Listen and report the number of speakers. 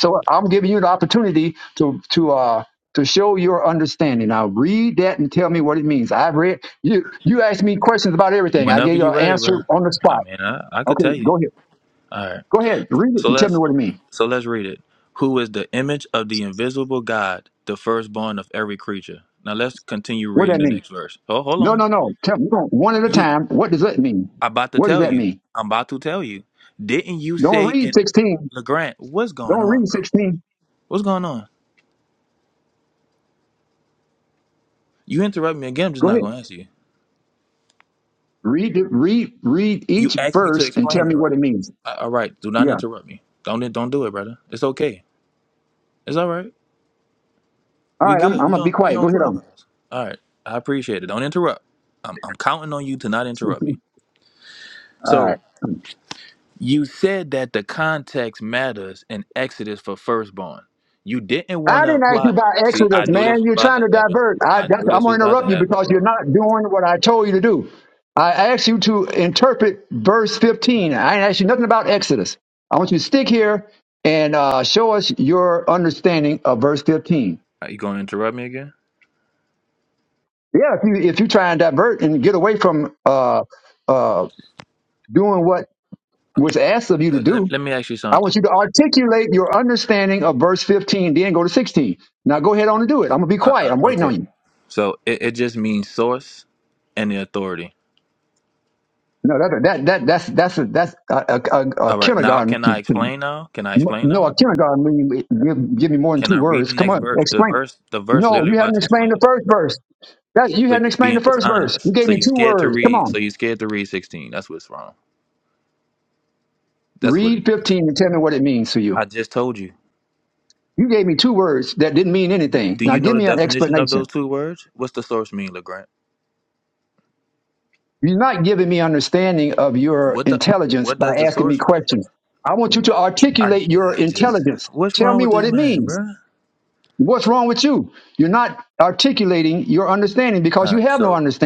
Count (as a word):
two